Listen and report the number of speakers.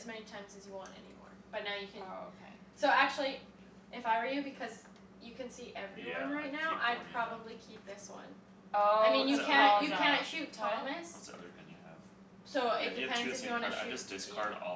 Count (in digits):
3